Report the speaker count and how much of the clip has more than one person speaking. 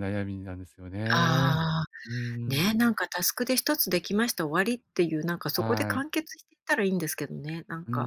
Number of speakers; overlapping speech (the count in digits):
2, about 16%